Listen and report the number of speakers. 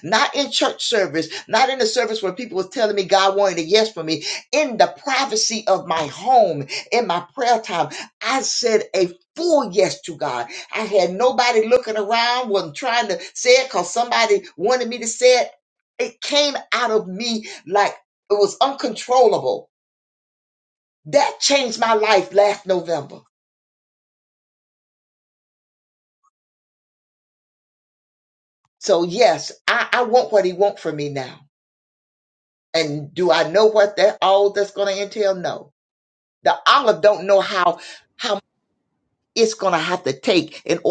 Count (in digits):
1